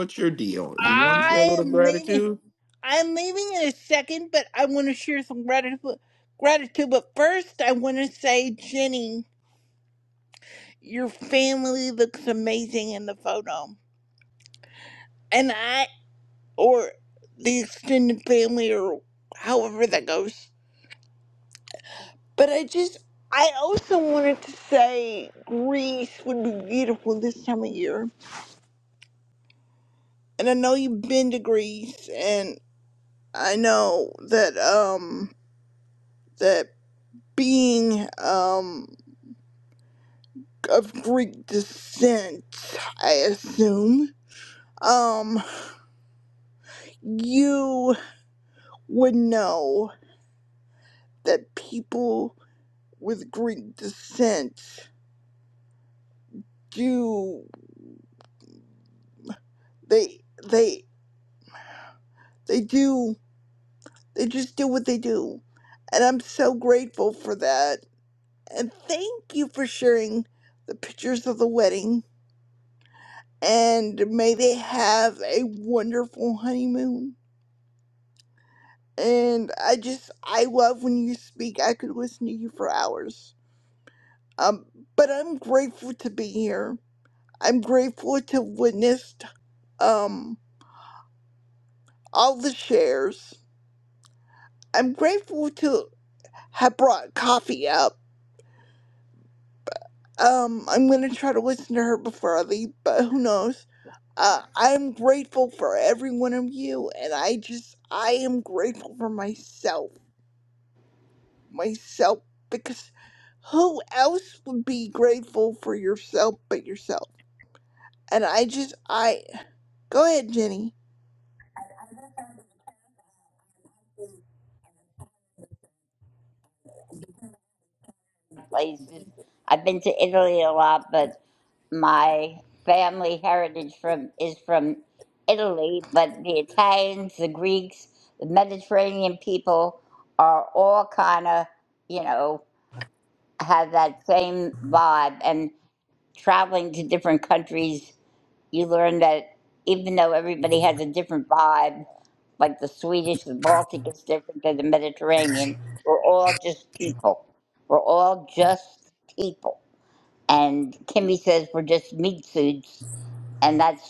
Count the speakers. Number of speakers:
three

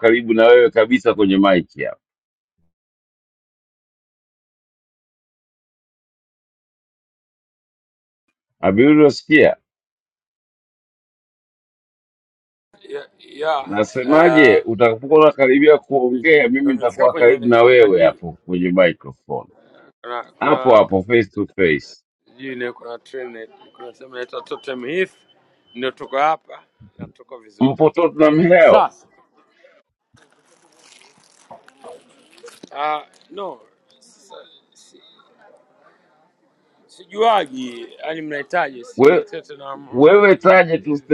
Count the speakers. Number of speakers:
two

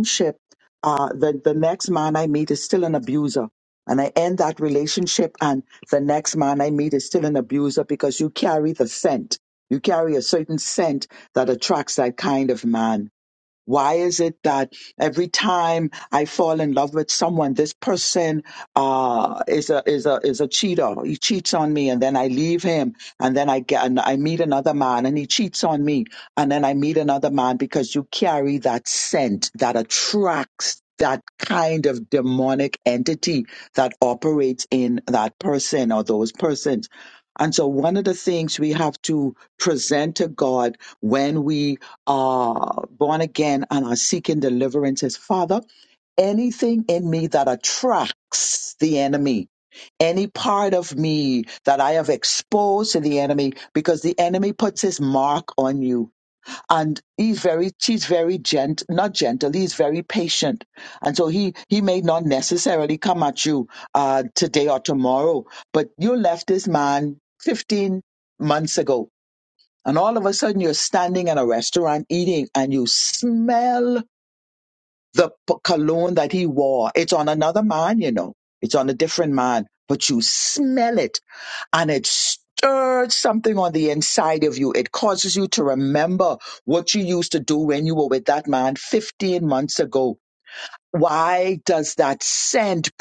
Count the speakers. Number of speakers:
one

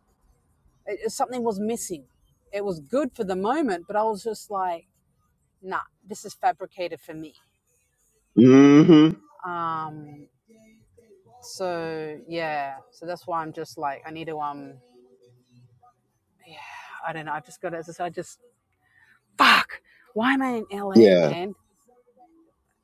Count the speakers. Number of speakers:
two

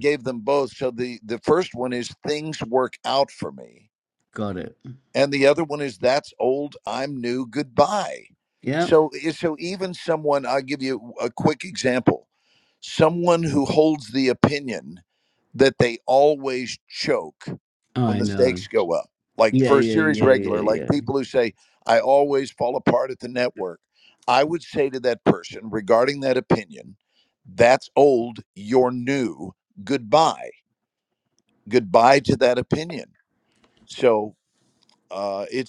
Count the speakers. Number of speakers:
two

